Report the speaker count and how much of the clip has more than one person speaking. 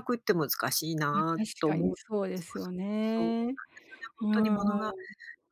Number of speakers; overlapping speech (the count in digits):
2, about 19%